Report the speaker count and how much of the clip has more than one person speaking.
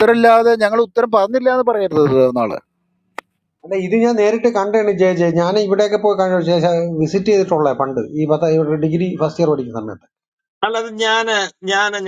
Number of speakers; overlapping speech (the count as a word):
three, no overlap